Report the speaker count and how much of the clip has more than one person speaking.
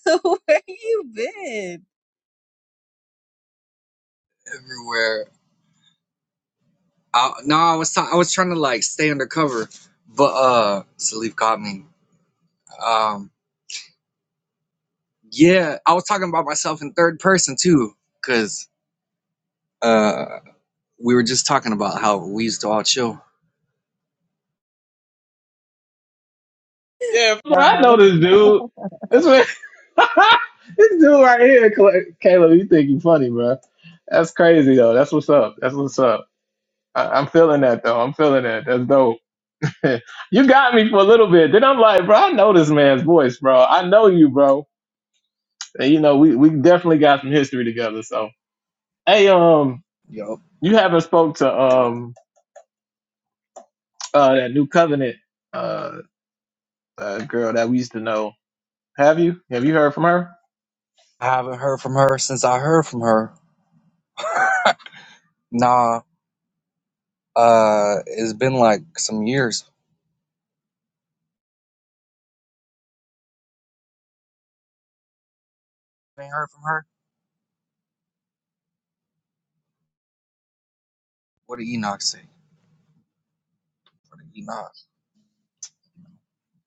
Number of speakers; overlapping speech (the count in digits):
3, no overlap